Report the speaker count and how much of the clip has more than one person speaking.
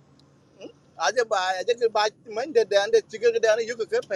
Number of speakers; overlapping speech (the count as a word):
one, no overlap